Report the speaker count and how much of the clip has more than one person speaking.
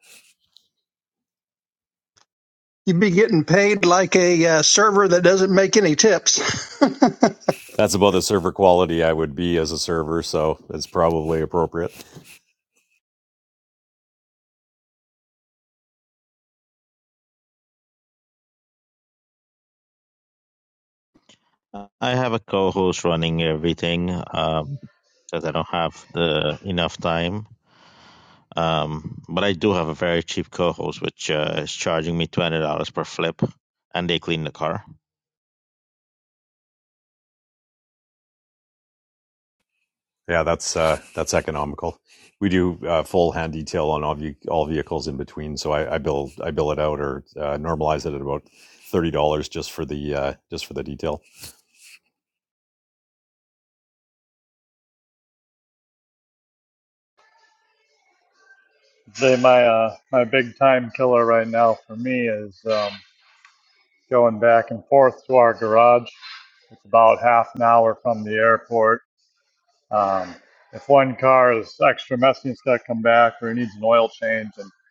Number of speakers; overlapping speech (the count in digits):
4, no overlap